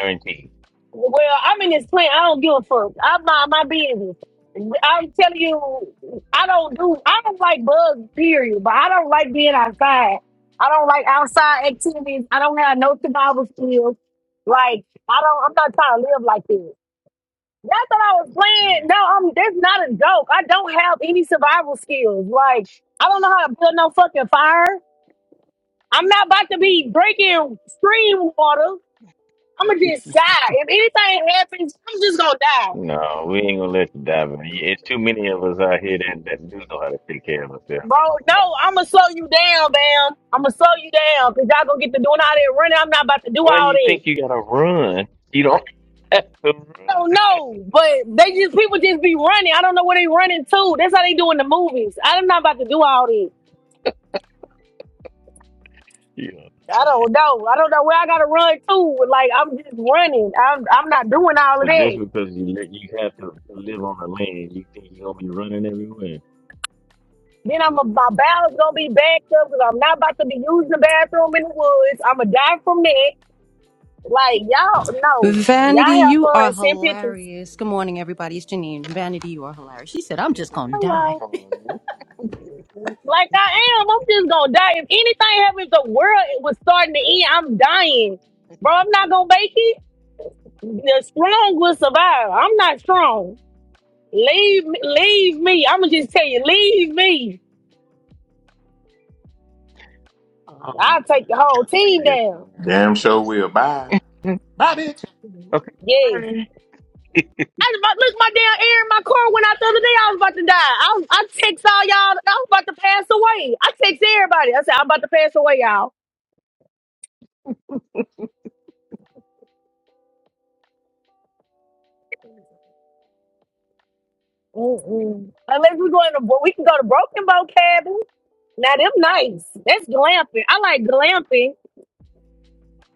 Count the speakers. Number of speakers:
4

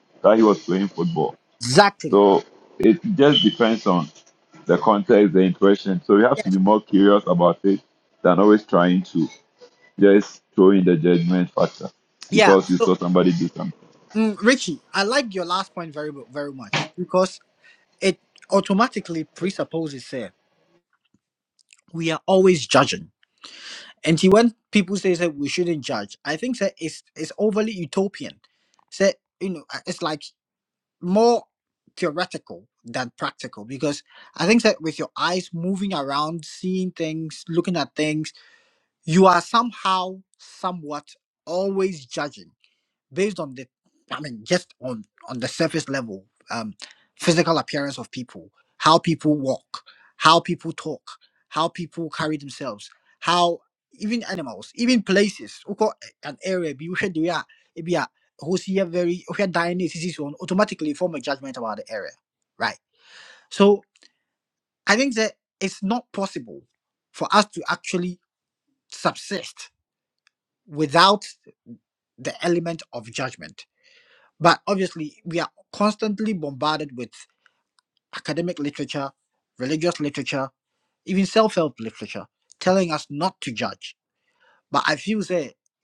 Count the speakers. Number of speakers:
2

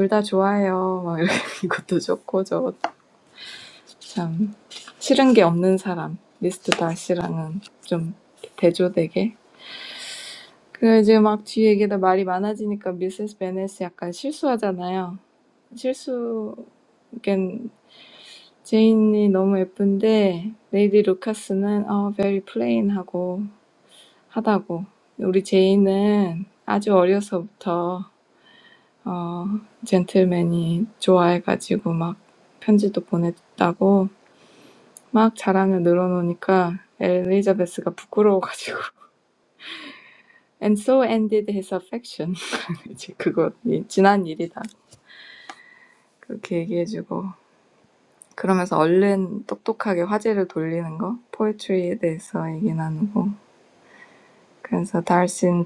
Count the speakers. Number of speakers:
1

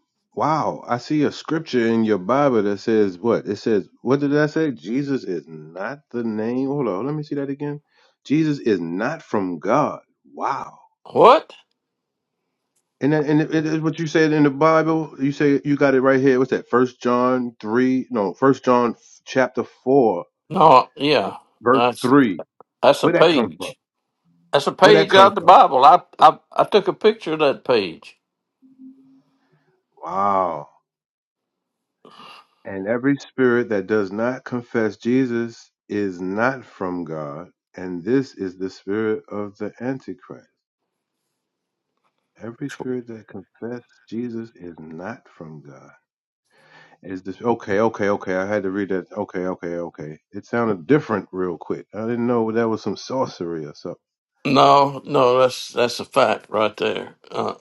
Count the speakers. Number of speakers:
2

